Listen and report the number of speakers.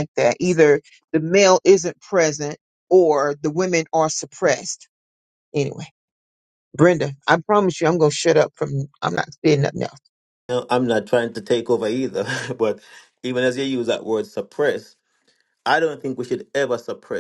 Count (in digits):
2